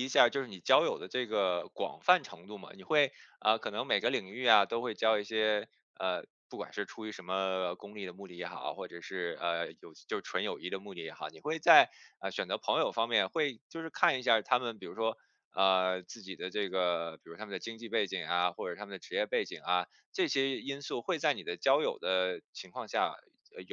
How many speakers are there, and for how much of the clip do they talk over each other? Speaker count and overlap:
1, no overlap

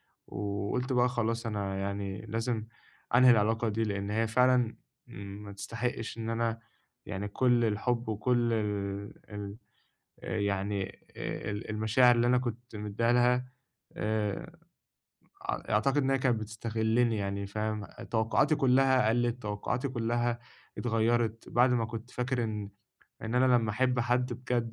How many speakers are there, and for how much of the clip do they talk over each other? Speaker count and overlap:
1, no overlap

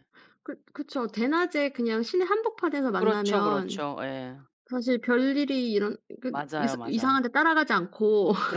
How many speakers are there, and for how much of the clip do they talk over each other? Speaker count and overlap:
2, about 19%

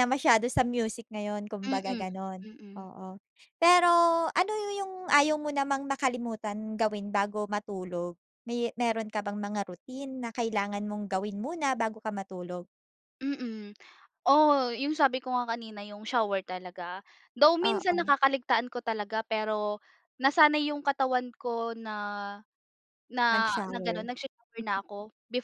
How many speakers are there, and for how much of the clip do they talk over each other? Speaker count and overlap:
2, about 6%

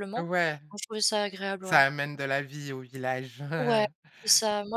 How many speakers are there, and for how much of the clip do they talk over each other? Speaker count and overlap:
2, about 5%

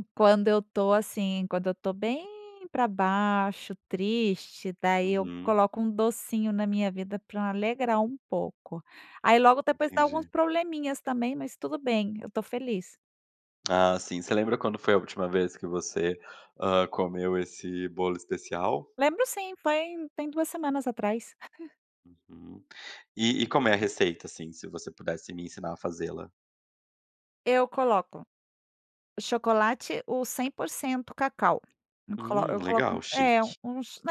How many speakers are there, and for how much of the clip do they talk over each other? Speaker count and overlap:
2, about 6%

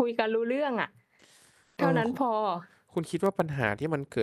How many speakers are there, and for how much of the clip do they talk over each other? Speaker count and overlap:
2, about 9%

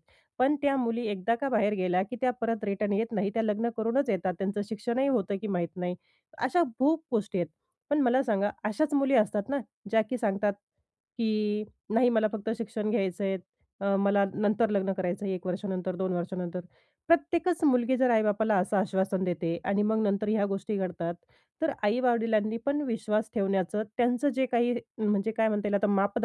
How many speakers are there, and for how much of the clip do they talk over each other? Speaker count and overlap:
1, no overlap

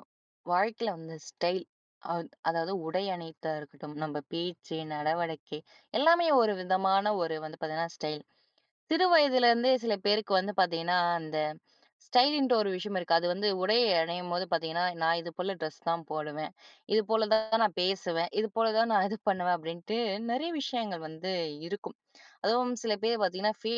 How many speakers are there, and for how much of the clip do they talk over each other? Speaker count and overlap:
1, no overlap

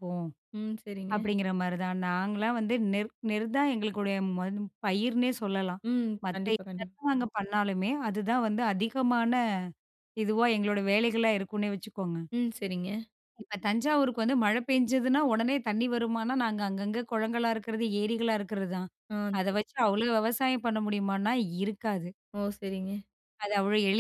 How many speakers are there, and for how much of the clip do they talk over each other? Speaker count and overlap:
2, about 4%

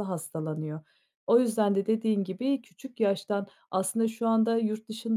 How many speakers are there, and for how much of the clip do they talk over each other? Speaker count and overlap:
1, no overlap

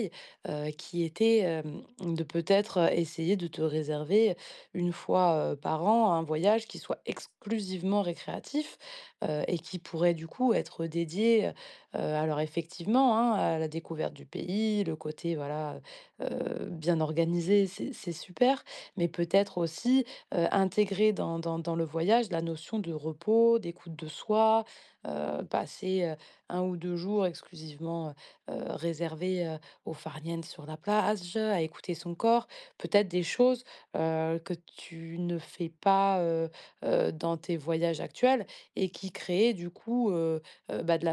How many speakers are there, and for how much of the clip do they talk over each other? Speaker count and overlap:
1, no overlap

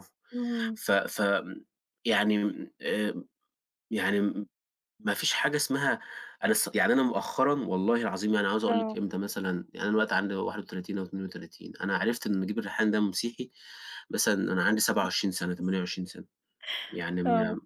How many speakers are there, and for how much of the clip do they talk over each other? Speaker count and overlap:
2, about 4%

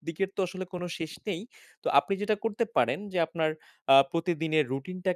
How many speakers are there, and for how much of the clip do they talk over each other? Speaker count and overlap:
1, no overlap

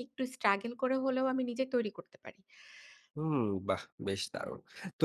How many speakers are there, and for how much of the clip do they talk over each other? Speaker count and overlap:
2, no overlap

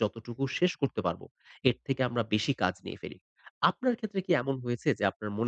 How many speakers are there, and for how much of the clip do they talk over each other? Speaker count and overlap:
1, no overlap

